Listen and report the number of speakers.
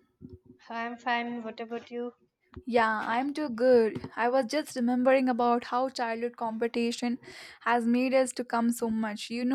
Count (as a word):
two